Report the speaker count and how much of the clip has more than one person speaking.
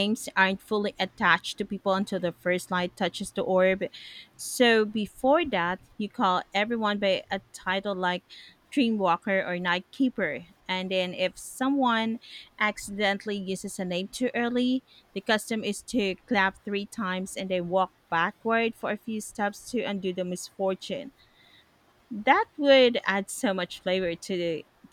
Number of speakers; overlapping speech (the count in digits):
1, no overlap